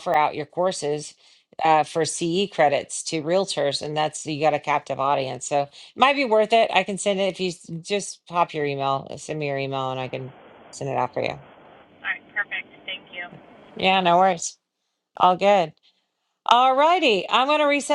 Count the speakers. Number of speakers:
two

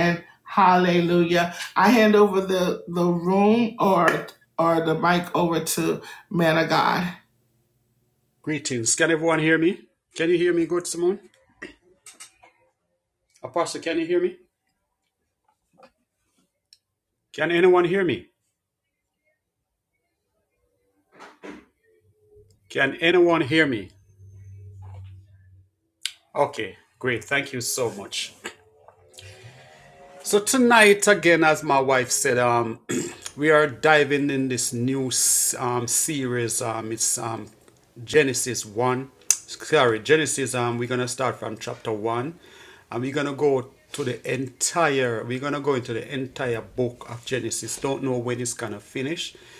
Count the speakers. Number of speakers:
two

